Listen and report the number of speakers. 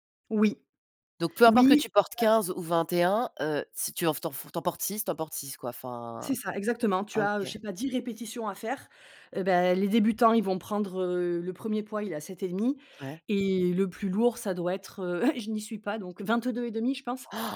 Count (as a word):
two